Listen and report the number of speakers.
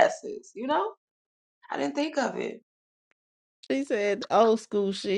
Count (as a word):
two